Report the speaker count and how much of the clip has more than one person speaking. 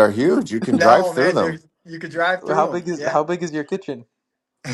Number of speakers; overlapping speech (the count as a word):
three, about 32%